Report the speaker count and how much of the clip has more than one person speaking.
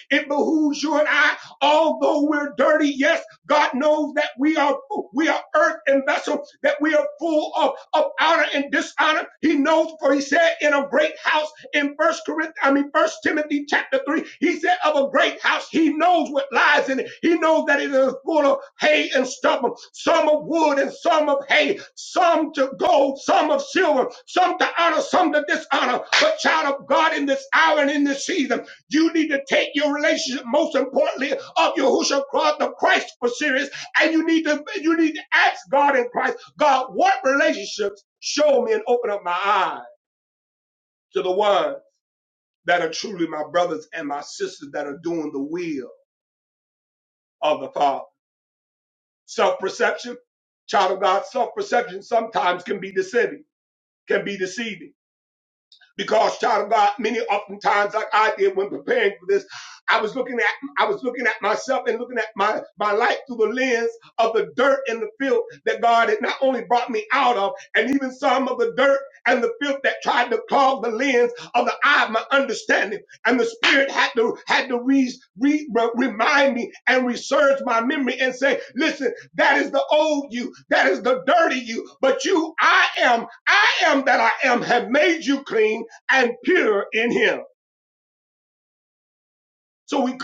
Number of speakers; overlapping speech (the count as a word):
one, no overlap